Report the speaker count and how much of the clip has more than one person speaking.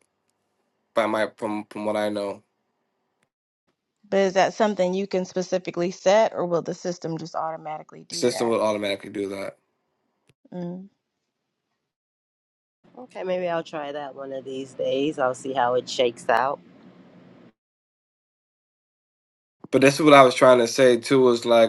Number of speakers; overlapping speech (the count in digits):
3, about 1%